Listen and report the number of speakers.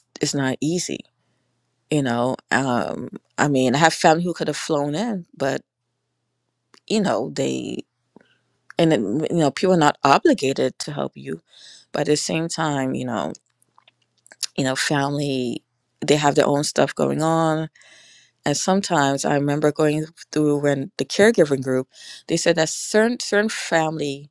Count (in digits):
1